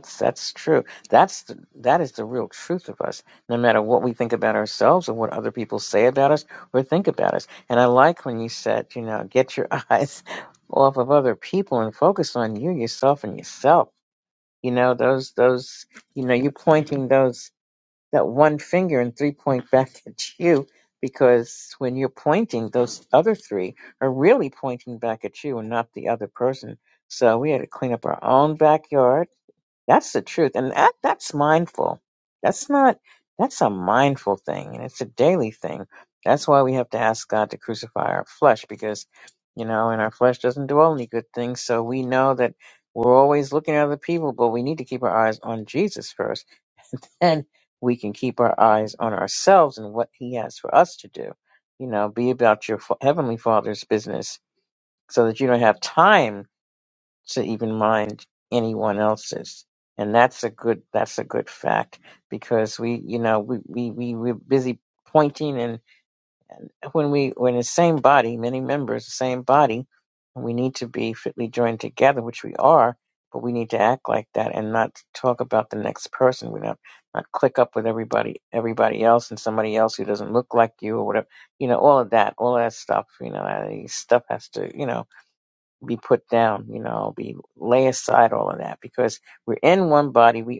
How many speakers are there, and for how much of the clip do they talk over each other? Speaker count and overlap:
1, no overlap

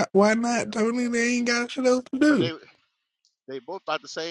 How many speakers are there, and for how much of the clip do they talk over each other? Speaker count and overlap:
2, about 11%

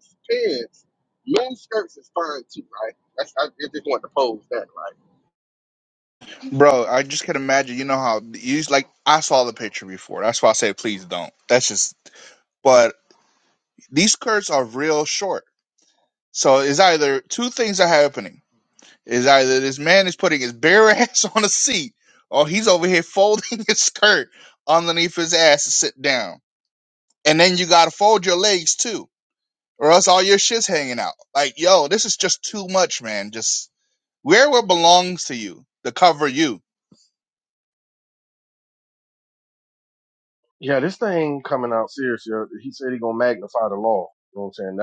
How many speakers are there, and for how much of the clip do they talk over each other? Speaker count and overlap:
3, no overlap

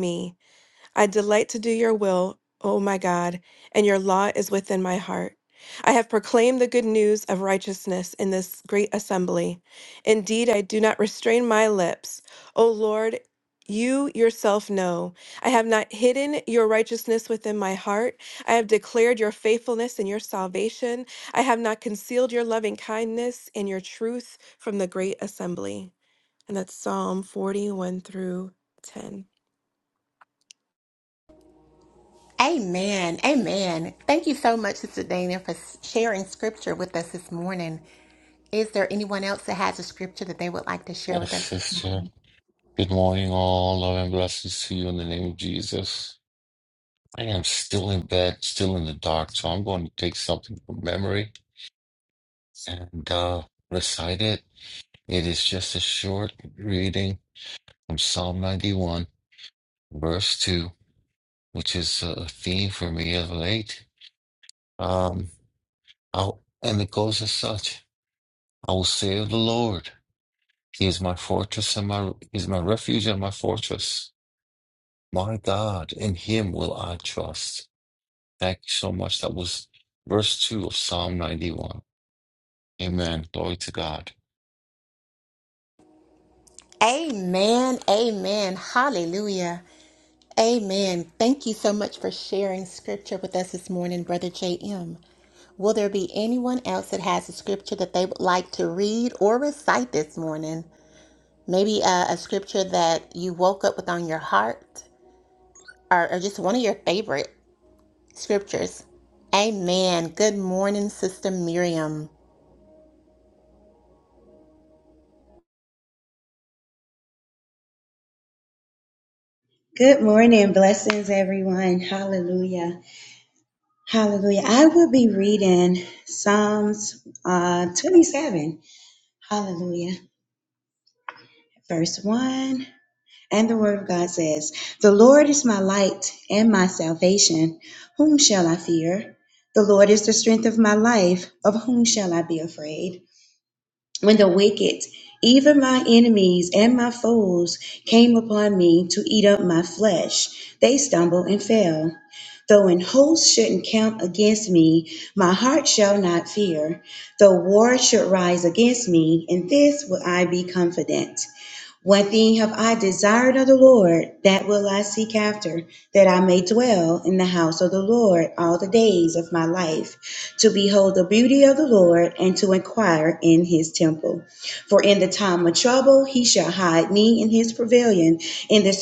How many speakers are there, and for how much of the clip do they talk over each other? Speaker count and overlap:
4, under 1%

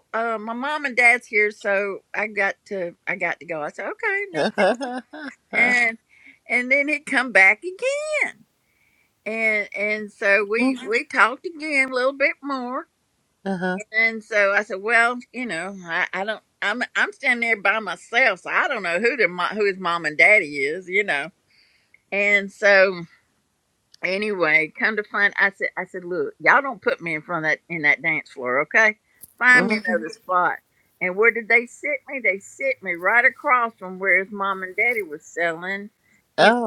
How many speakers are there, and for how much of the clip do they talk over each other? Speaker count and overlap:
2, about 2%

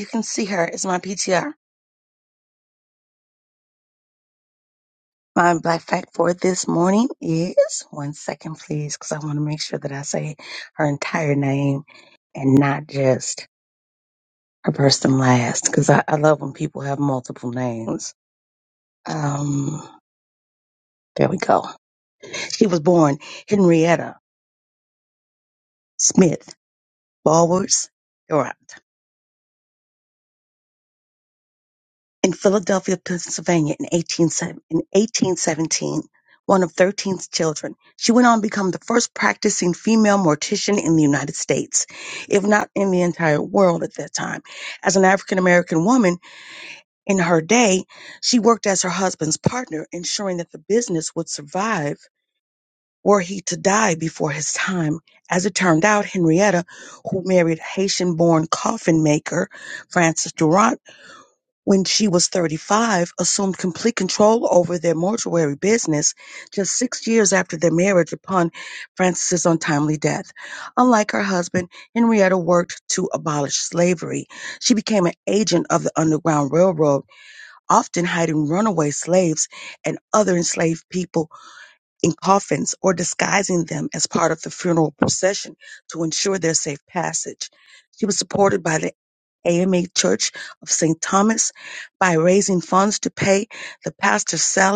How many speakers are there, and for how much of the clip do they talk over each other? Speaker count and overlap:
1, no overlap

